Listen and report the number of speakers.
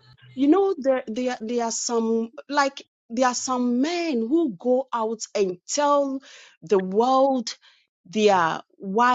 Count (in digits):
1